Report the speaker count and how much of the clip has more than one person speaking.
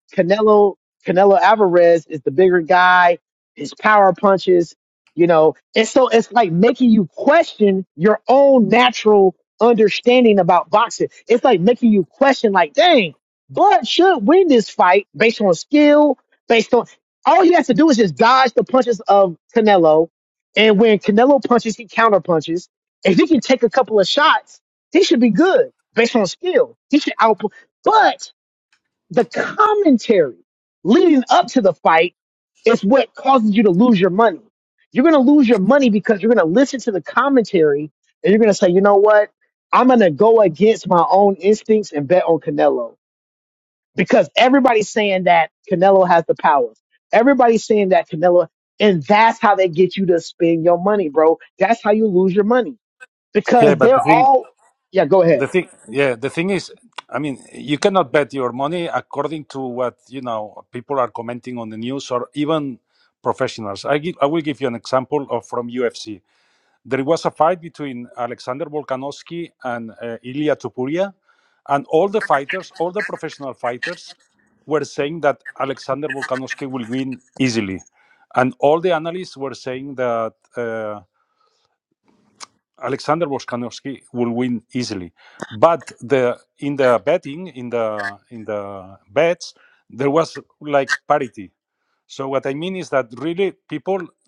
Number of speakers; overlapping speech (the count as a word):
two, about 1%